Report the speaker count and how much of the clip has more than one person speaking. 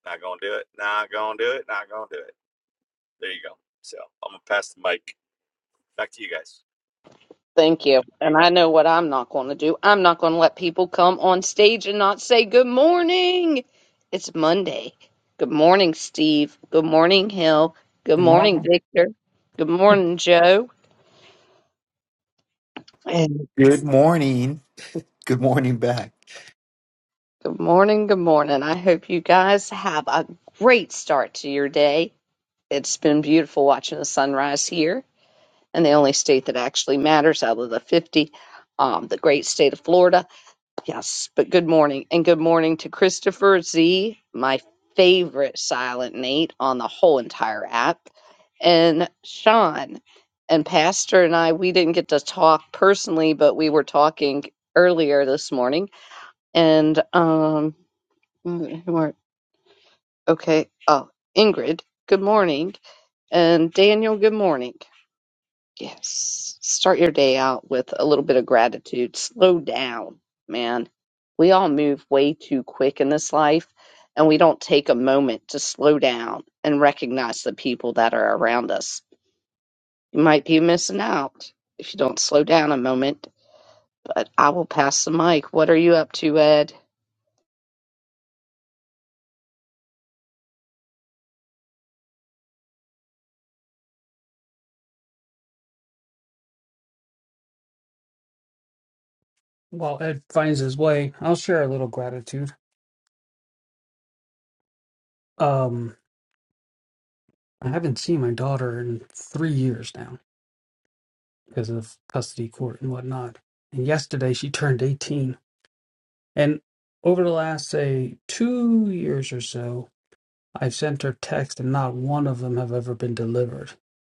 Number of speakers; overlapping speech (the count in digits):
4, under 1%